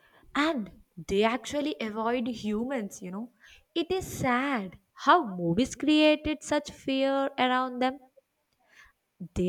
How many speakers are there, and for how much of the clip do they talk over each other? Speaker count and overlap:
1, no overlap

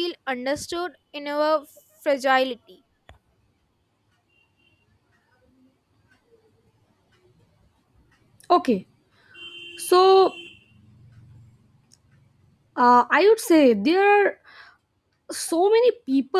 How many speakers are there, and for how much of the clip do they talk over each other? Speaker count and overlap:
2, no overlap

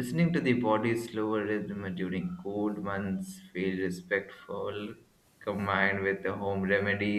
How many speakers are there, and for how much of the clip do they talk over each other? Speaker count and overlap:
1, no overlap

